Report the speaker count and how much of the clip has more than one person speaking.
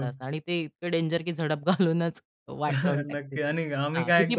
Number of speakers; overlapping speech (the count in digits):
2, about 21%